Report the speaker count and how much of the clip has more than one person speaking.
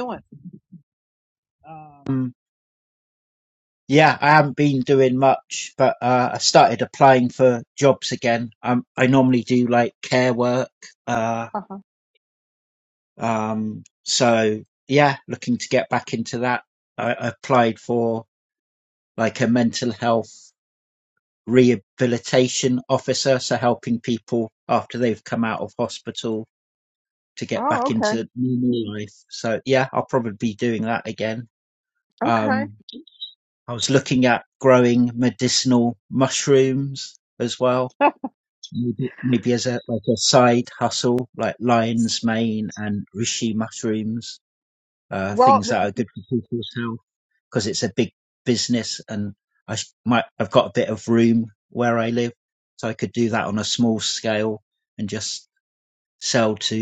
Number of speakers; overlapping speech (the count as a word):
two, about 3%